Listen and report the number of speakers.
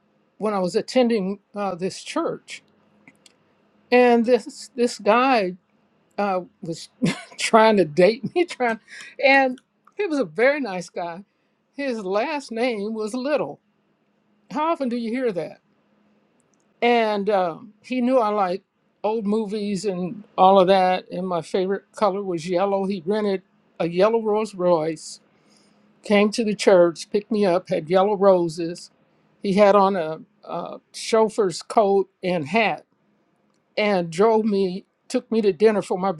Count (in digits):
1